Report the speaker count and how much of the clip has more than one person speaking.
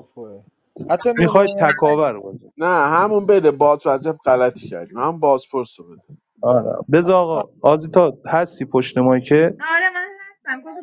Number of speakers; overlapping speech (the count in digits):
4, about 7%